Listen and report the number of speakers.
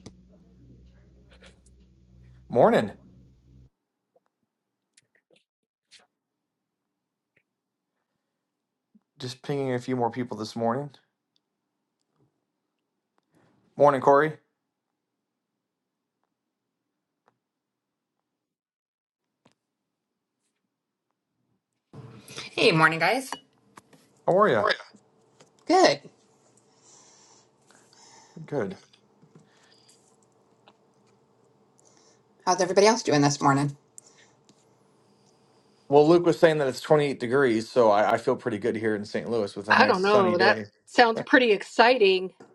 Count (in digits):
3